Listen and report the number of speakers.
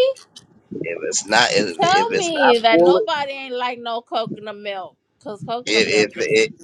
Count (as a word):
two